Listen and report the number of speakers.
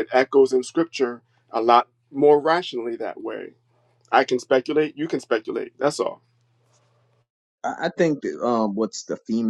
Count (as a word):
two